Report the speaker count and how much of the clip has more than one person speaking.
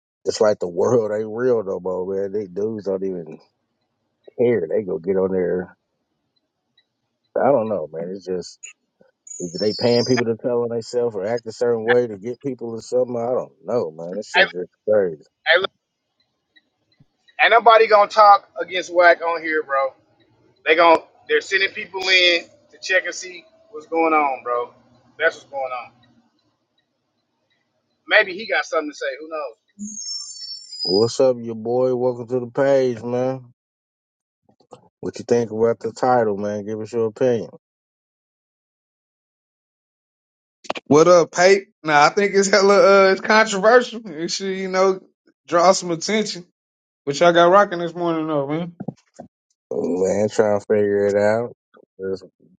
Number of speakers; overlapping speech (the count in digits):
3, under 1%